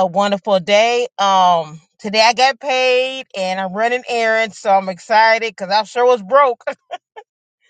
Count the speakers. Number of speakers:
1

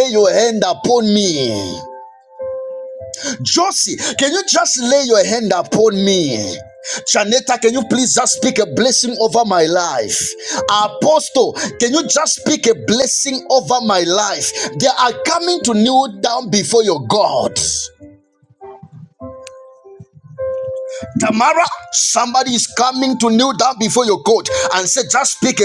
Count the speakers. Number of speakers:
1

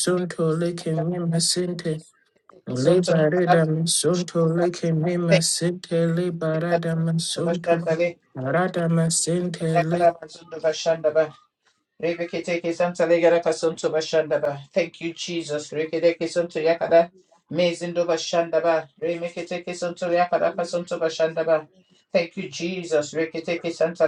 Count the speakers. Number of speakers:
2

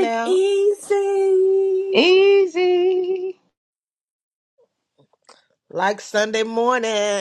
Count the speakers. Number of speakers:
3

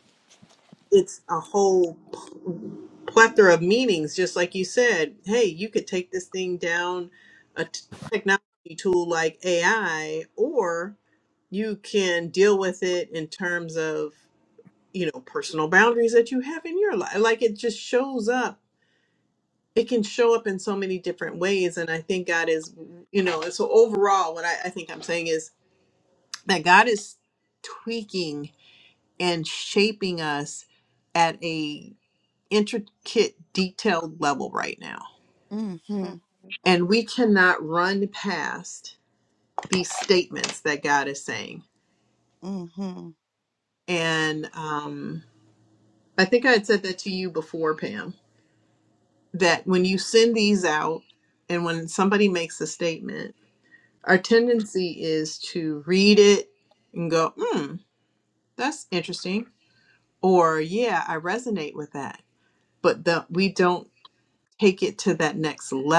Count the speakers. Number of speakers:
2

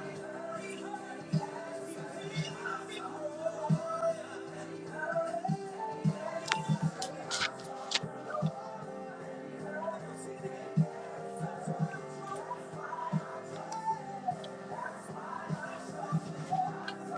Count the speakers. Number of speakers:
0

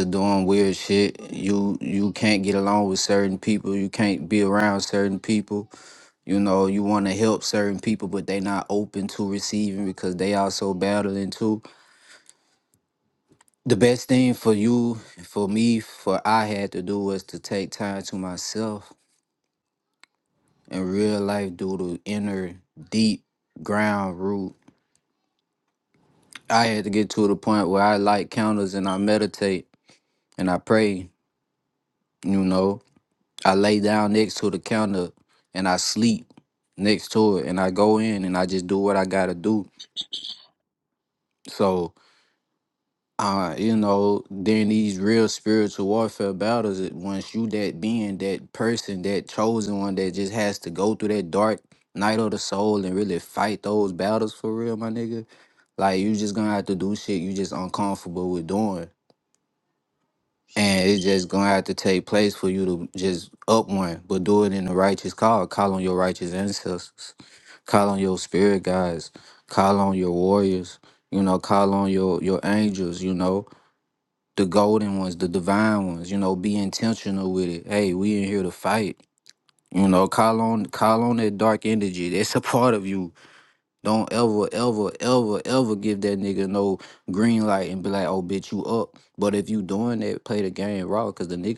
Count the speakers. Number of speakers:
1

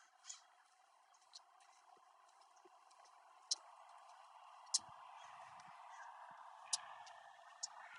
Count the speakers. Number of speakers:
0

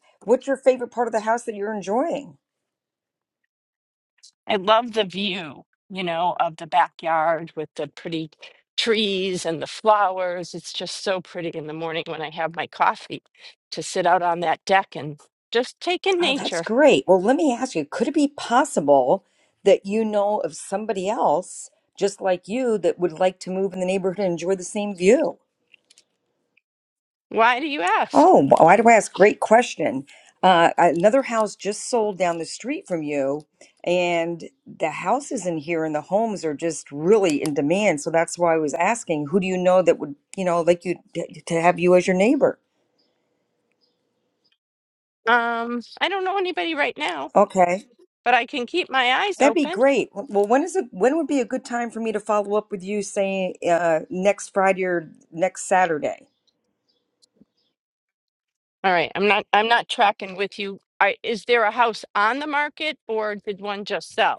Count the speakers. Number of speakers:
2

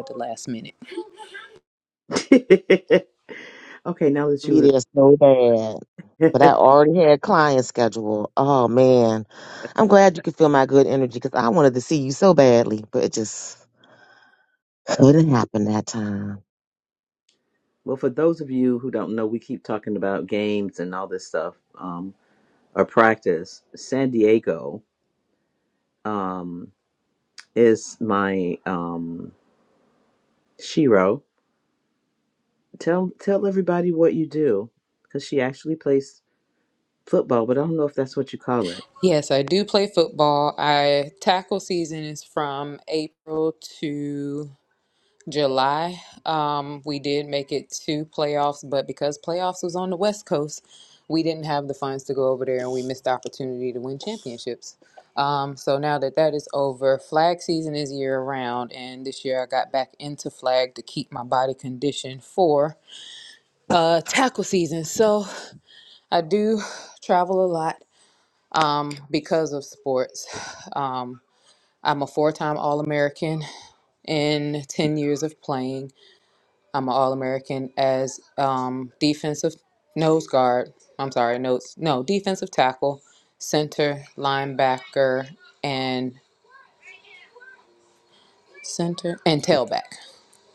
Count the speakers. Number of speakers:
3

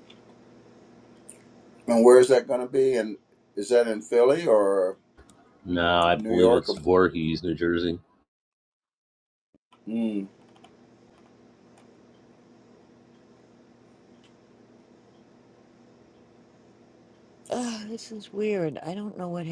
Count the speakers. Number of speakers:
3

